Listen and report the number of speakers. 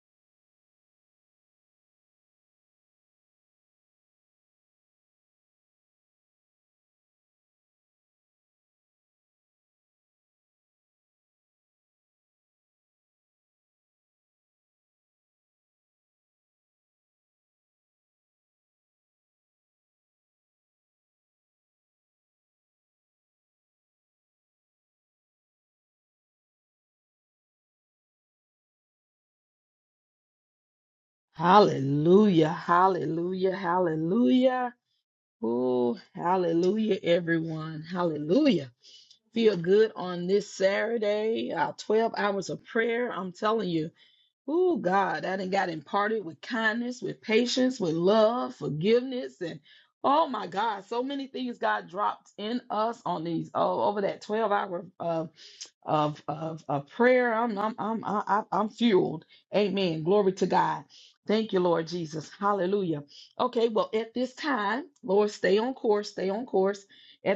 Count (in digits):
1